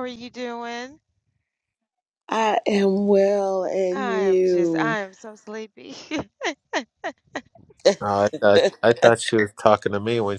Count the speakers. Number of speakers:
3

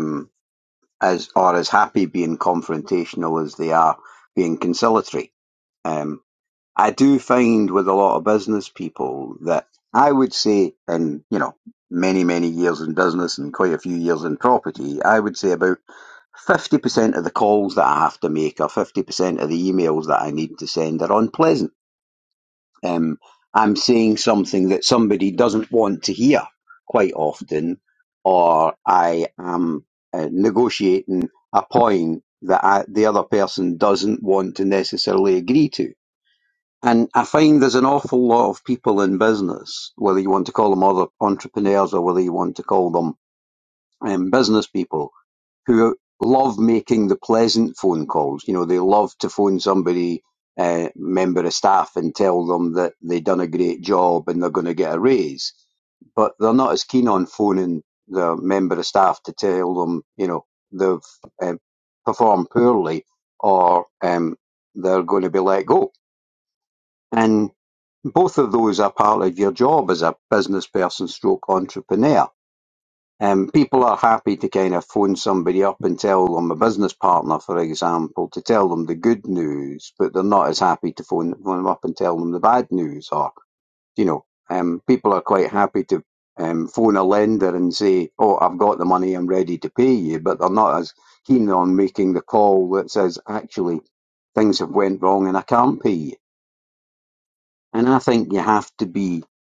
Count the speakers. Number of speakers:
1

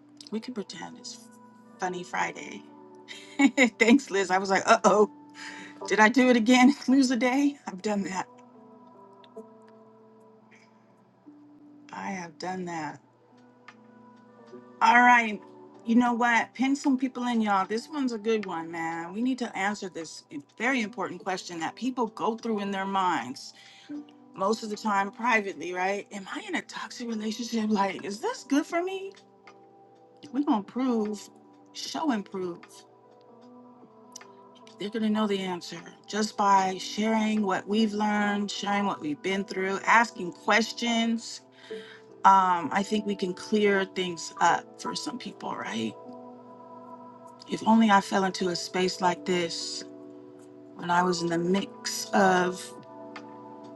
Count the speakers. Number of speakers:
1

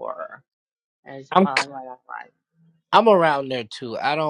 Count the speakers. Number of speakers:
2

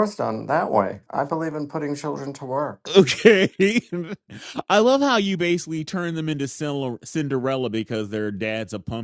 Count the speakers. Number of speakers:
2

